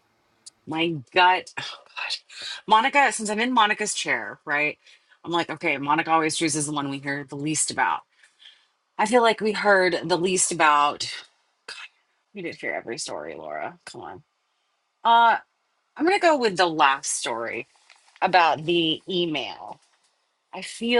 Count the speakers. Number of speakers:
one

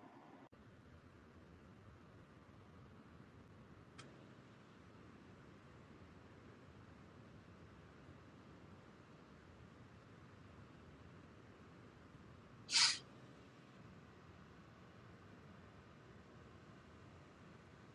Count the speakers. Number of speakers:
zero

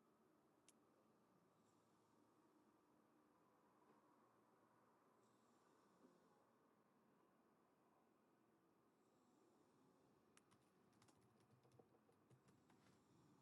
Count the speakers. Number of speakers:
zero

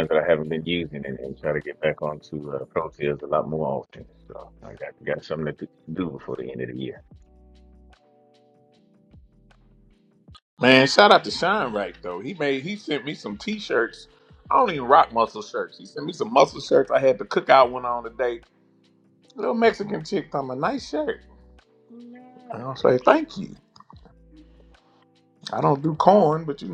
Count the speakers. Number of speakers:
two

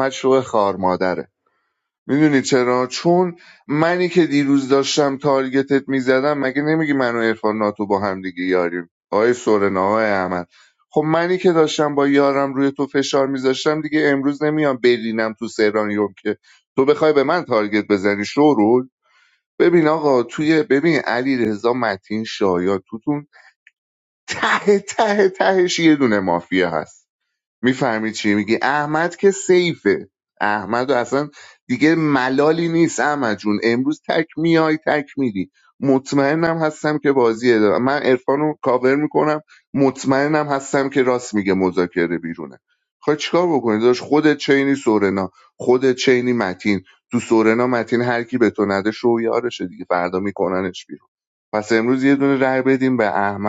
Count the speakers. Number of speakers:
one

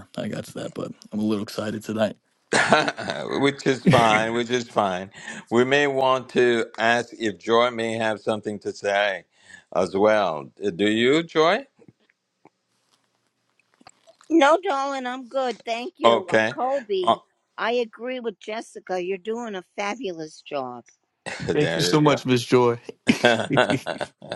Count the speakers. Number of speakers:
three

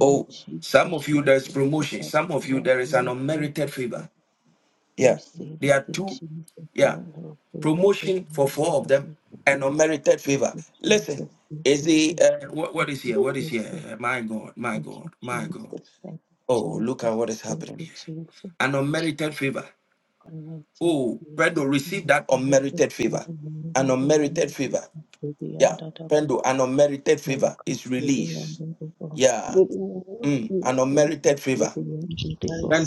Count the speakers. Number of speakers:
three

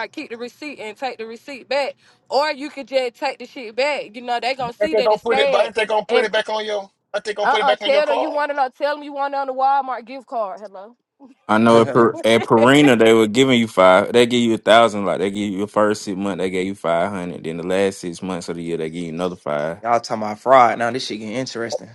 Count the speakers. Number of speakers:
four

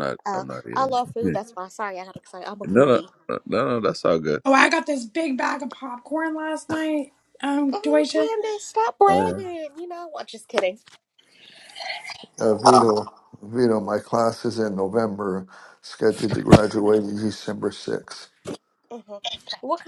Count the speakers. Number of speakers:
four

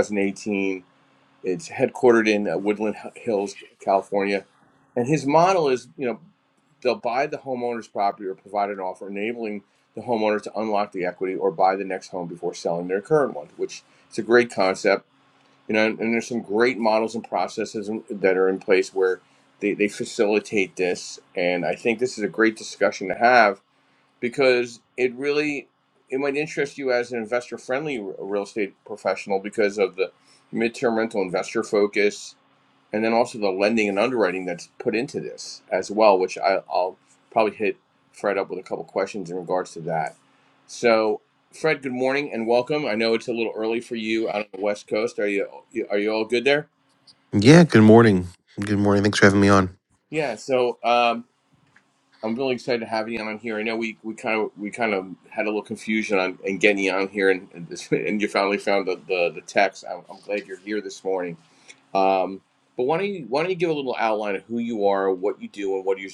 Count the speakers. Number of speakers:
two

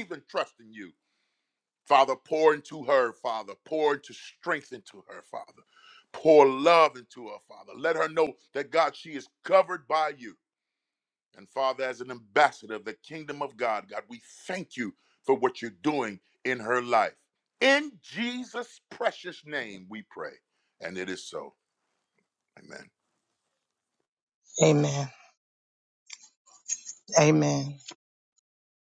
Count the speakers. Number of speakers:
two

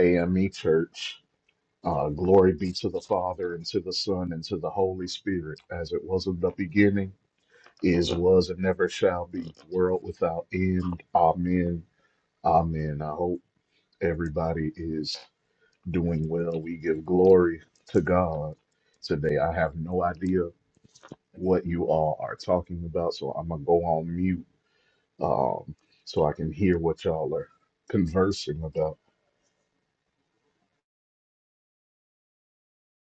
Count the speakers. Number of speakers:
one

